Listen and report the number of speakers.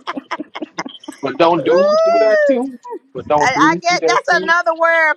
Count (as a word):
two